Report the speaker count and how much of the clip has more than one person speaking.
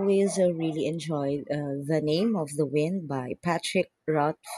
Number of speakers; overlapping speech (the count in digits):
1, no overlap